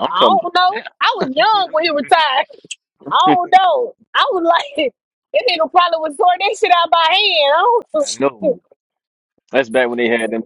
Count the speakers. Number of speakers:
2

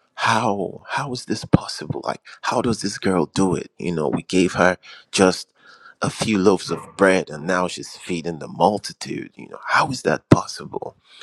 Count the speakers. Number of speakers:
1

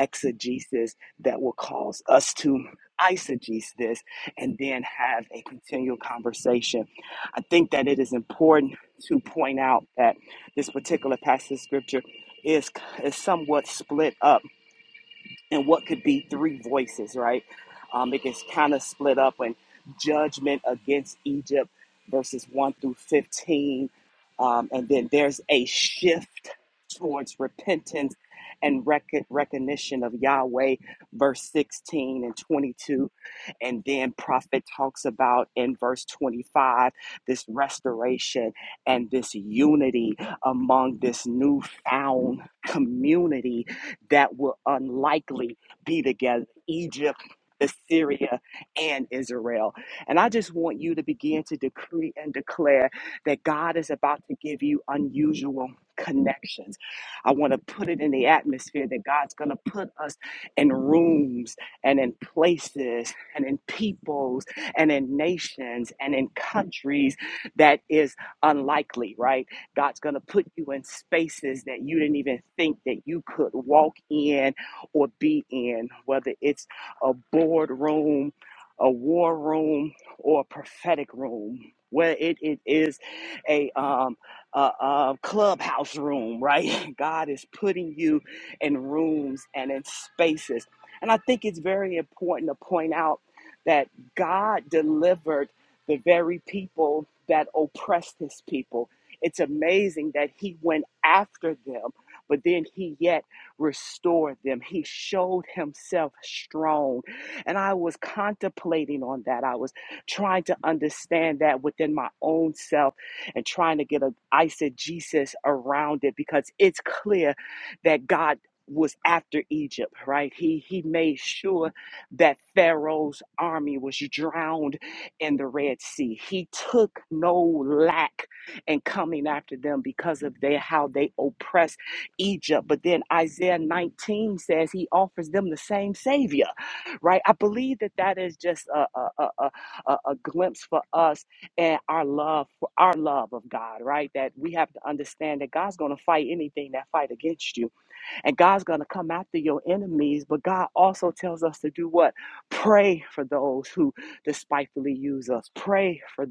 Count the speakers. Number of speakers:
1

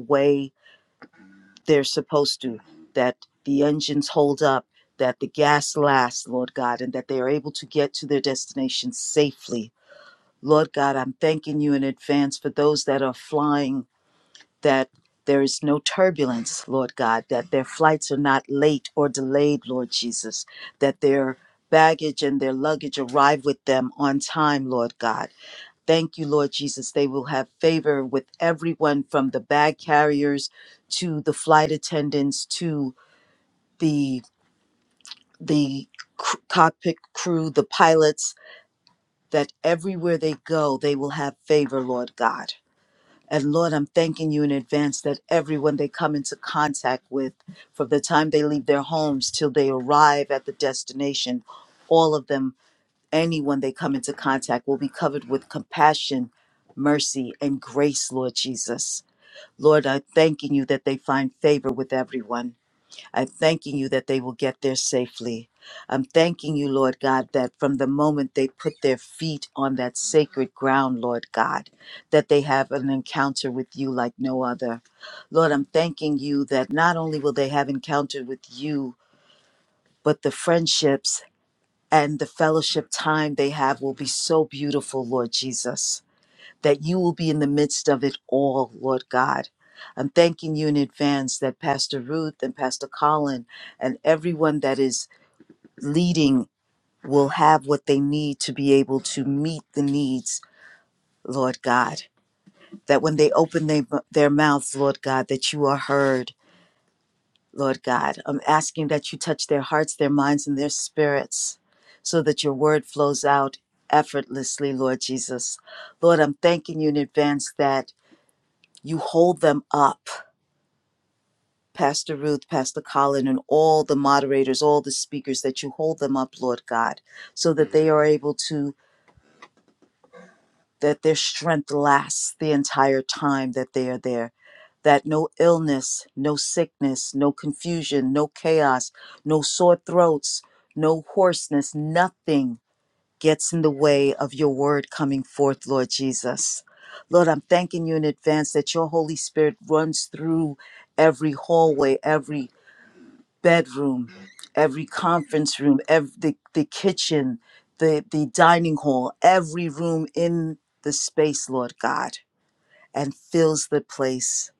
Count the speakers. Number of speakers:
1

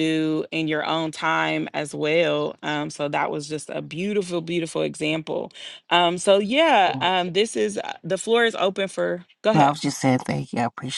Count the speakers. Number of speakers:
2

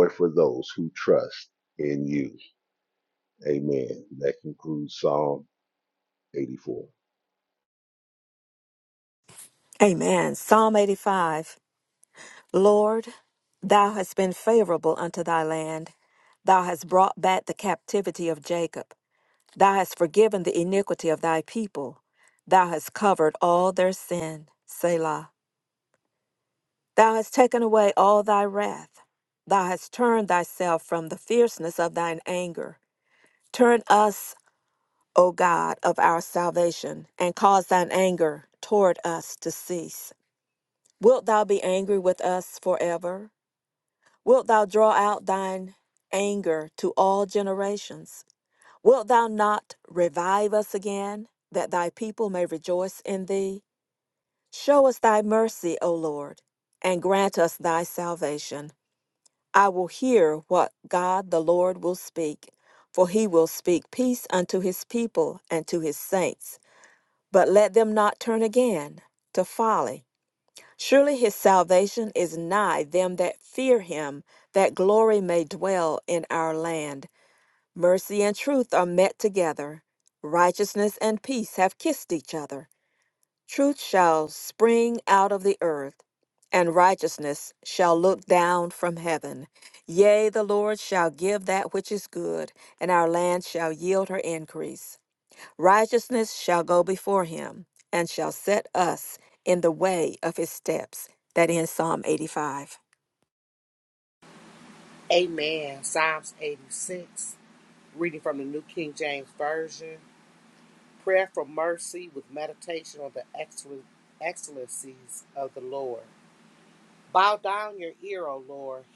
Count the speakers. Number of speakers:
3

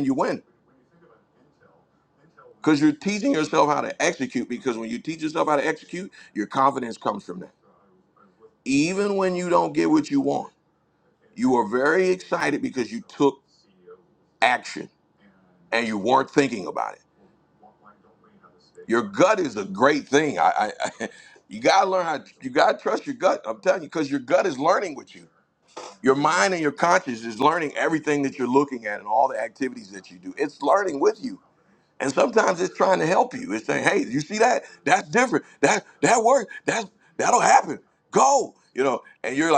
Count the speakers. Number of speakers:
1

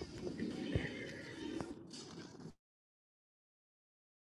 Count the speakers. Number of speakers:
0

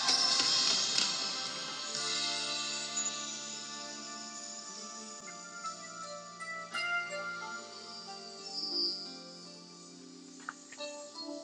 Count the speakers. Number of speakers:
0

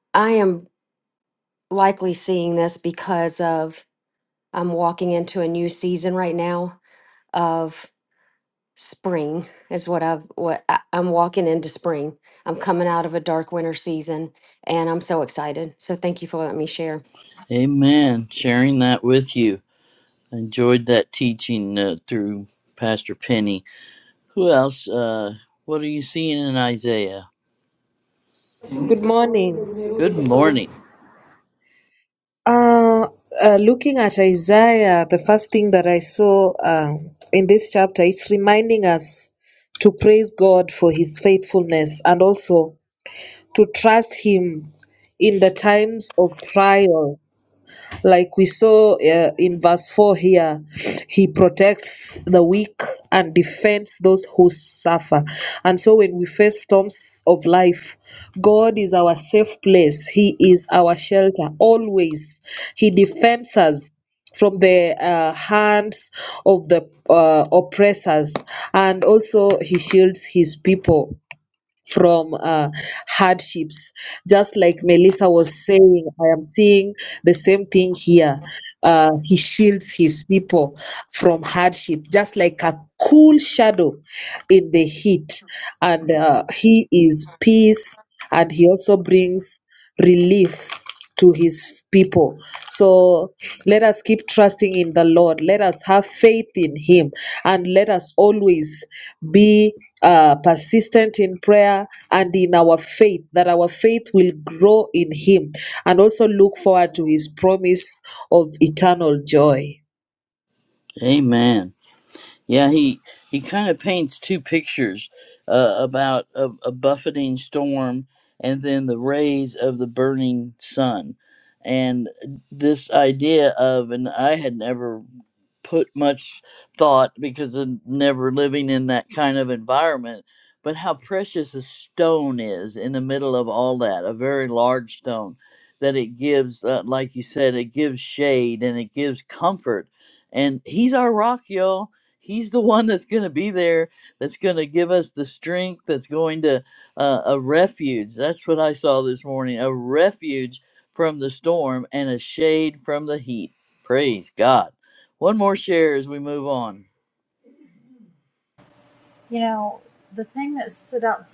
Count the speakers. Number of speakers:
4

